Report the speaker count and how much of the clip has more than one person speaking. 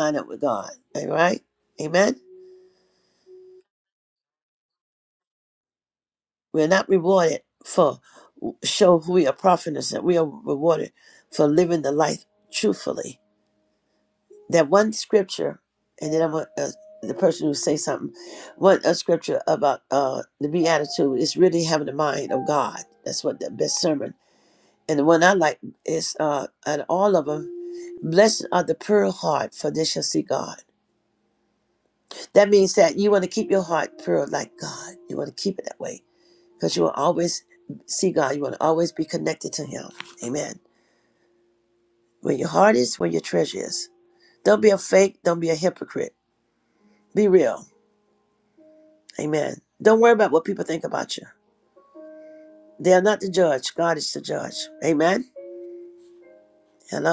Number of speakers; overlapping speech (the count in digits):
1, no overlap